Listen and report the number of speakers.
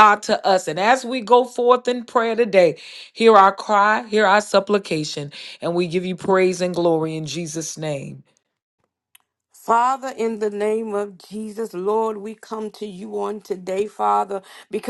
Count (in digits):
2